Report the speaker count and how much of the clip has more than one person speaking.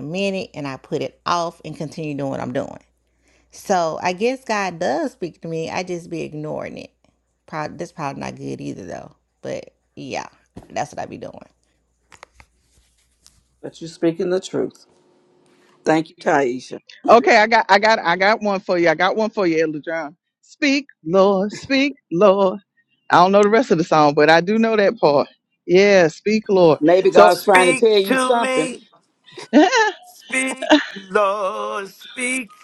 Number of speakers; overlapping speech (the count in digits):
4, about 5%